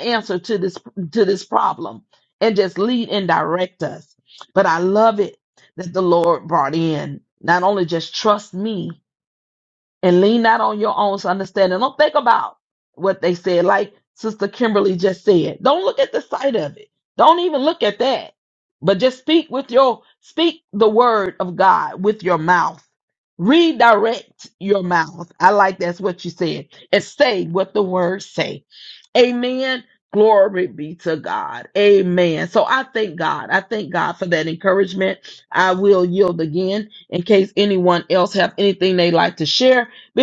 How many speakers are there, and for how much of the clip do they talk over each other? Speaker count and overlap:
1, no overlap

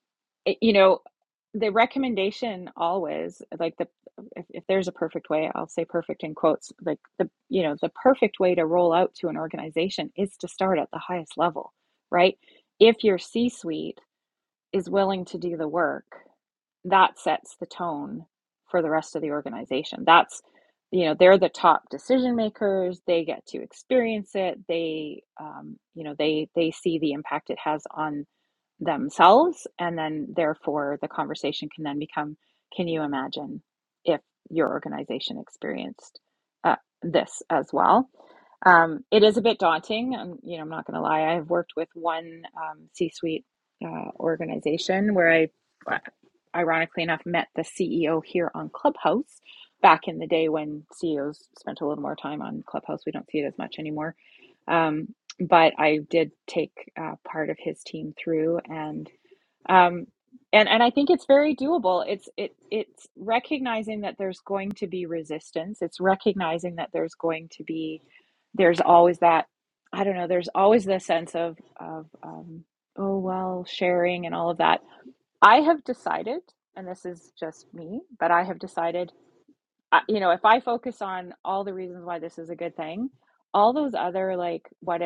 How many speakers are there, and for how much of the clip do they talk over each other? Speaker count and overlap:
1, no overlap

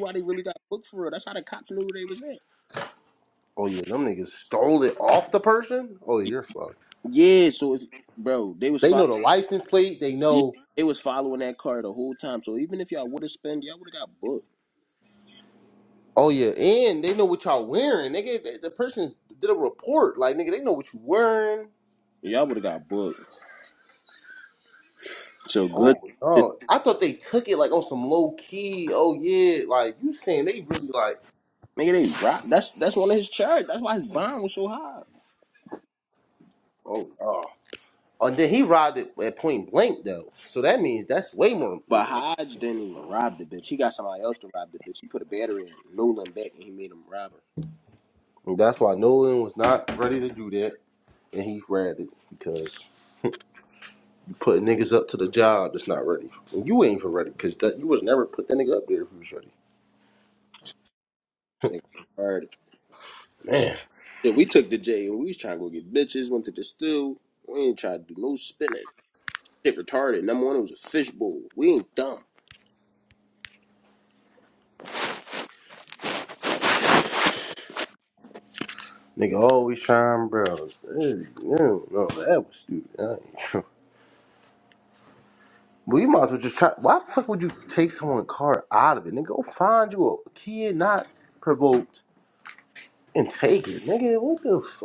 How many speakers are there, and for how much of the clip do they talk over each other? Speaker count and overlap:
2, about 1%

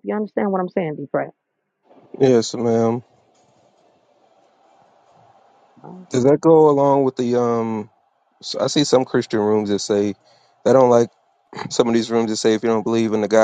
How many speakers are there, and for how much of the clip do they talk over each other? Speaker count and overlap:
2, no overlap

